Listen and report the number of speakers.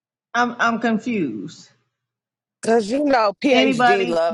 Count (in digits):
2